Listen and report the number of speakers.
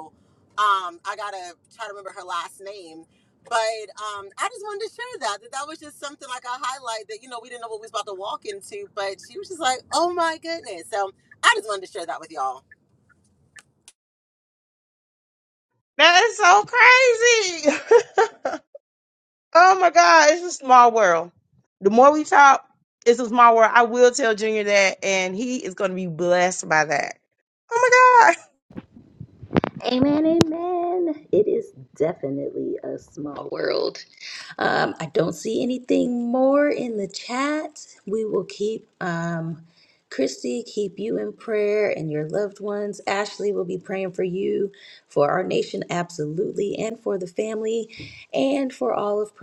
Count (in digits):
3